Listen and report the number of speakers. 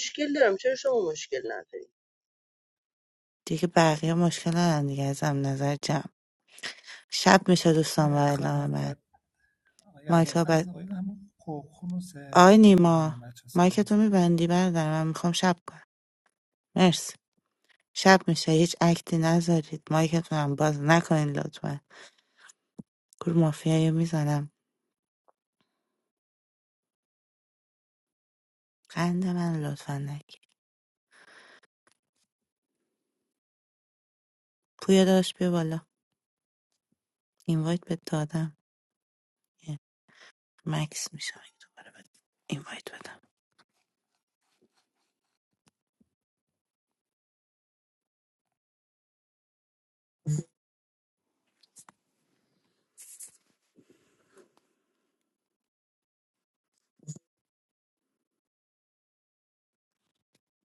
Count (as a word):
three